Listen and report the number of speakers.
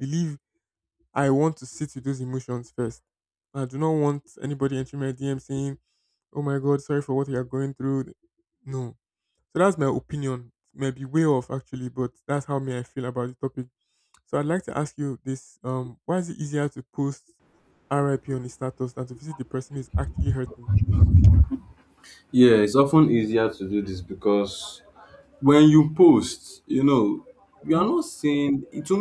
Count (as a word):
two